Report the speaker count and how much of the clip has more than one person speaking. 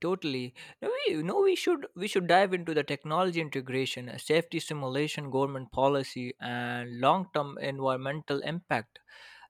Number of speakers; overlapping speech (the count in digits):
1, no overlap